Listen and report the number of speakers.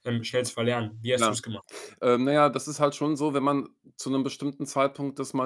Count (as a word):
two